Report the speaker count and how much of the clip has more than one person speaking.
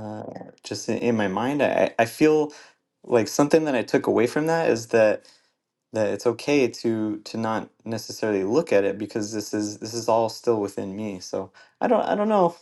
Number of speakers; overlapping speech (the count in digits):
1, no overlap